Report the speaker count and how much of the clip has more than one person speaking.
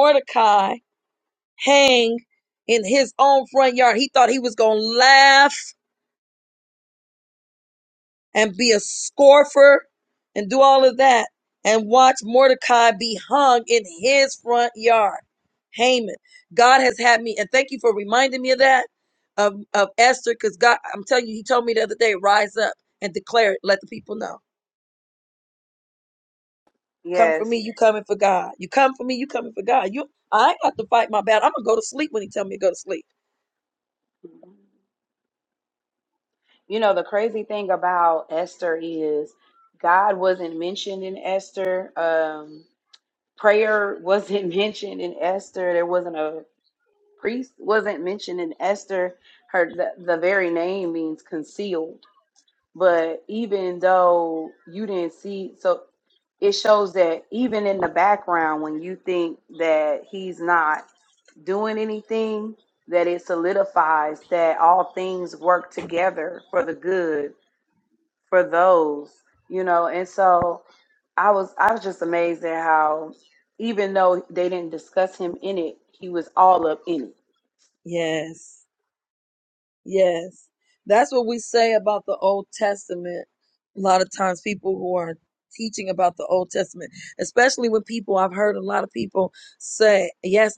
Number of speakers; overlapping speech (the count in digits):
2, under 1%